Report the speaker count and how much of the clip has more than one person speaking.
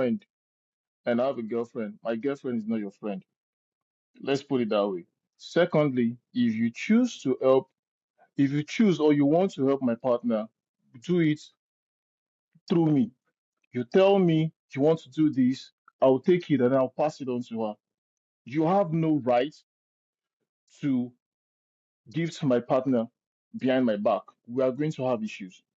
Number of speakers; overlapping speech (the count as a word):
one, no overlap